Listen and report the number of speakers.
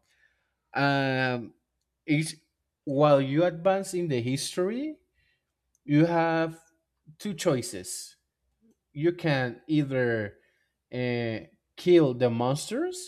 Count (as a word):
one